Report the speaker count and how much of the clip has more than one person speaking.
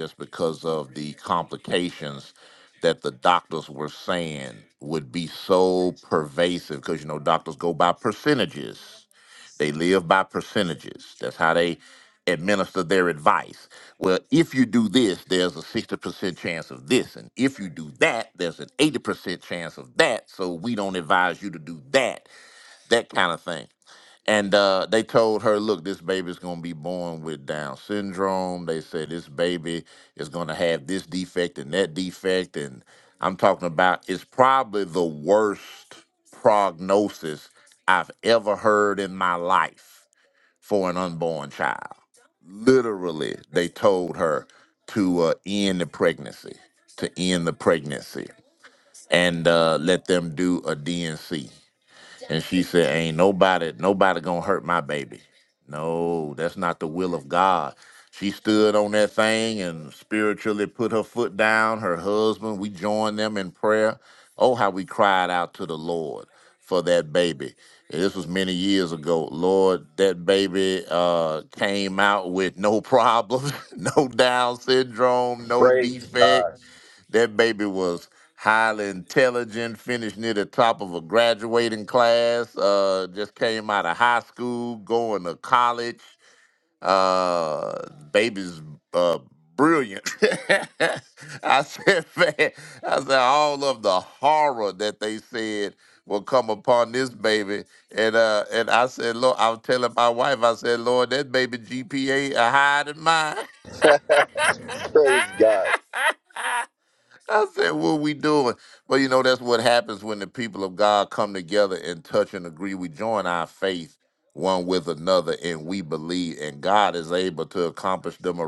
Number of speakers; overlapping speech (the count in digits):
2, about 1%